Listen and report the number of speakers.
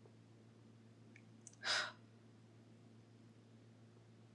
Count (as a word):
zero